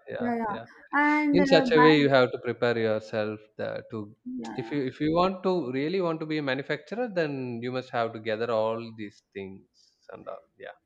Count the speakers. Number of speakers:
2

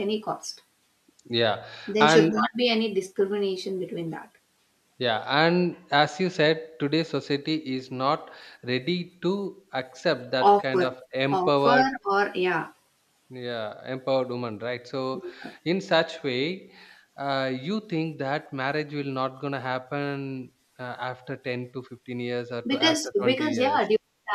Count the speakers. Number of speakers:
2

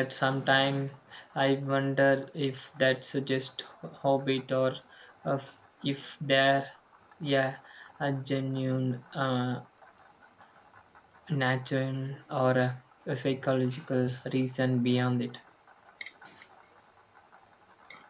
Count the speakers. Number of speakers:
1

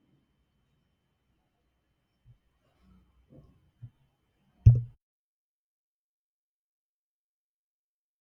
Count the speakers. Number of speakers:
0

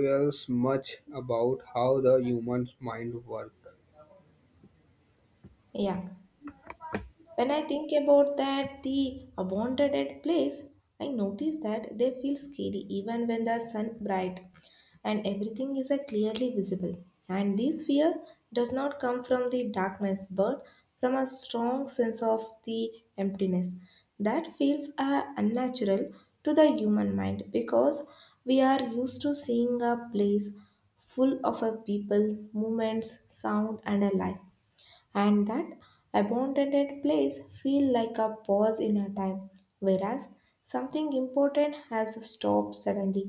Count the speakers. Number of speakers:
2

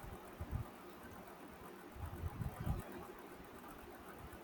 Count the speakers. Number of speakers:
0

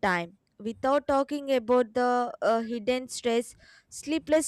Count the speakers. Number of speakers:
1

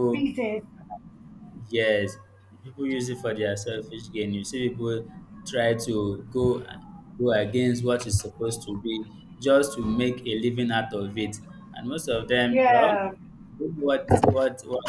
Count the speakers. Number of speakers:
2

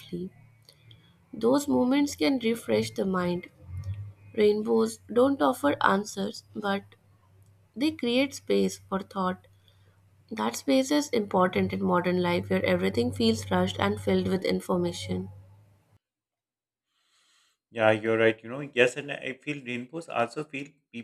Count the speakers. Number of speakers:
2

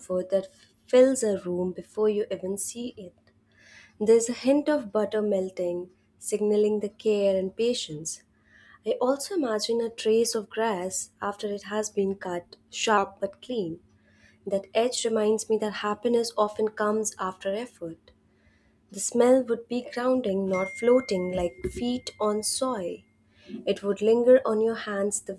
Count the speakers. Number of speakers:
1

